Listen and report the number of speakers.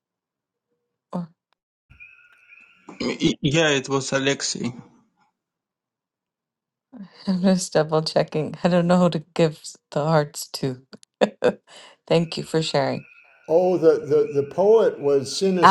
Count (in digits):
3